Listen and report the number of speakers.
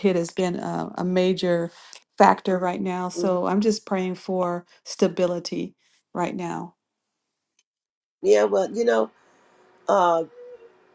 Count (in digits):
2